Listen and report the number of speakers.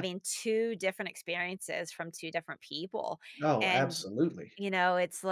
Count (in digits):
2